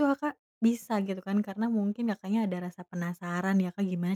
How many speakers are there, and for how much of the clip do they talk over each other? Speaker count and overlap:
1, no overlap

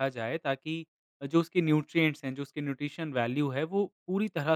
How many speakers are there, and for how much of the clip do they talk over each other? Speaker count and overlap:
1, no overlap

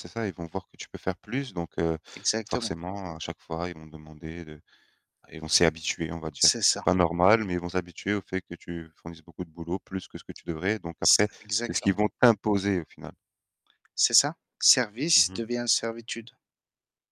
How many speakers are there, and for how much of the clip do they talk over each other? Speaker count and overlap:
2, about 11%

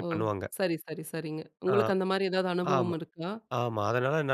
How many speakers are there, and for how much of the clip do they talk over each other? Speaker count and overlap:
2, about 12%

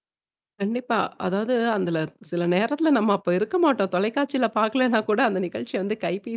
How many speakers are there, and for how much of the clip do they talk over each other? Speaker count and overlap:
1, no overlap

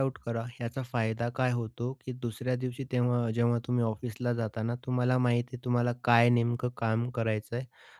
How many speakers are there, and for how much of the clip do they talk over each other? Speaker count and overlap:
1, no overlap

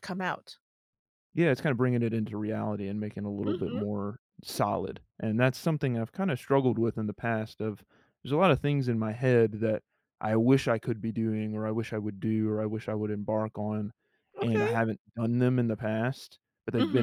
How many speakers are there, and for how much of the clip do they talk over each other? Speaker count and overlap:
2, about 6%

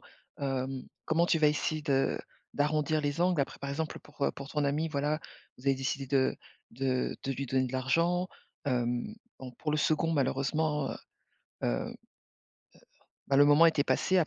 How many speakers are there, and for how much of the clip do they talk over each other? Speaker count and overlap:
1, no overlap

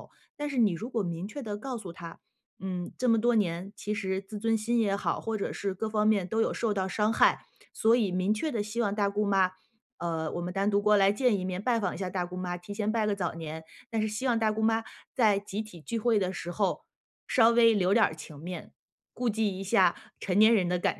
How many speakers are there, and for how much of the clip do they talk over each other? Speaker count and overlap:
1, no overlap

